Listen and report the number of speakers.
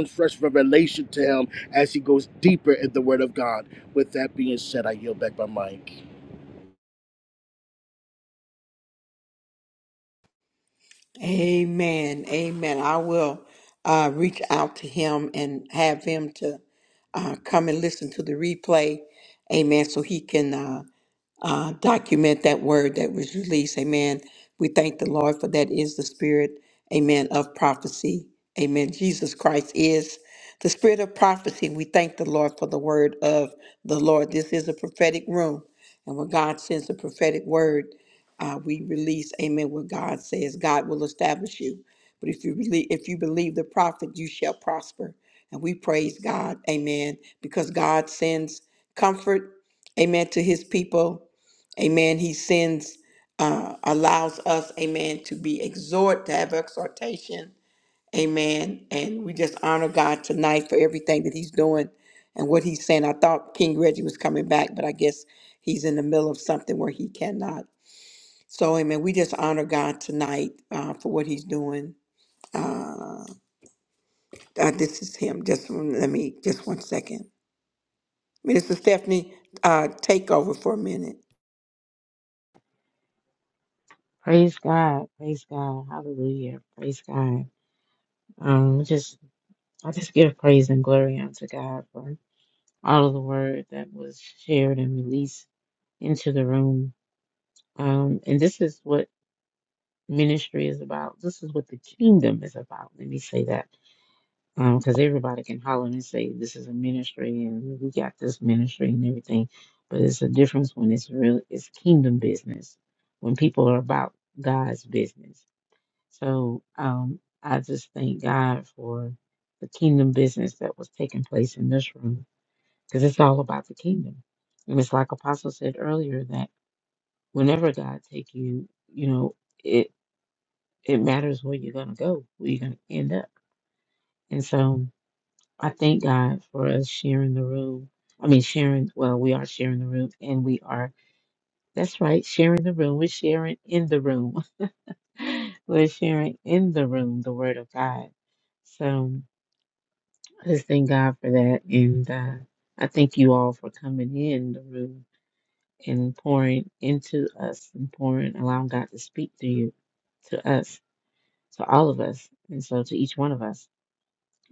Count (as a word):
three